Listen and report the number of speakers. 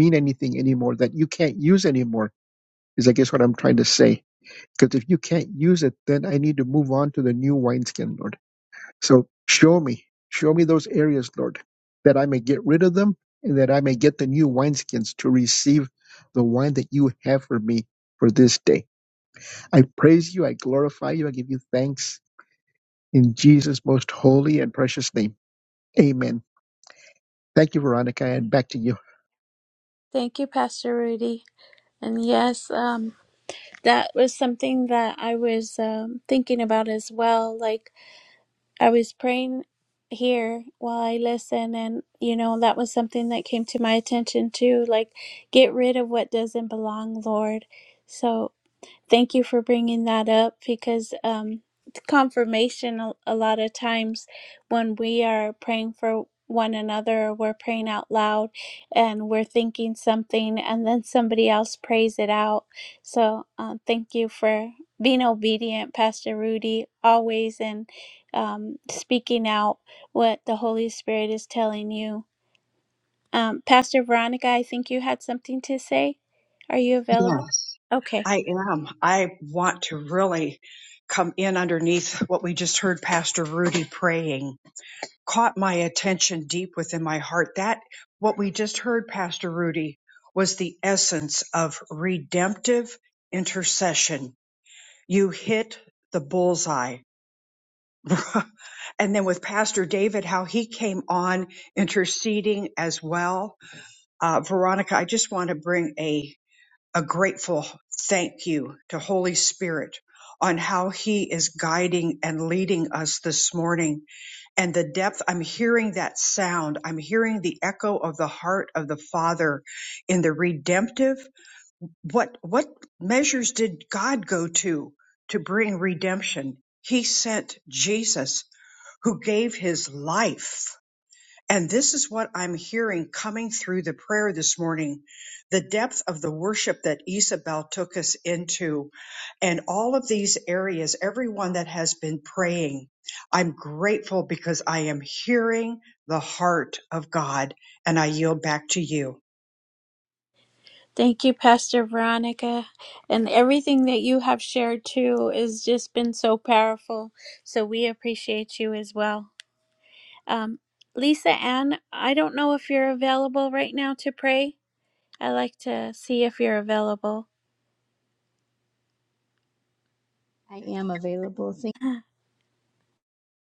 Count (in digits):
4